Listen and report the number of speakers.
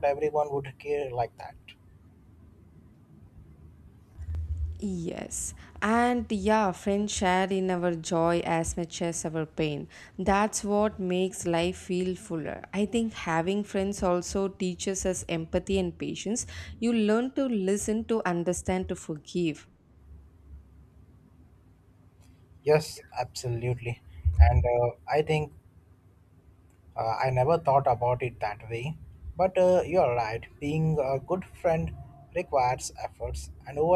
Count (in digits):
2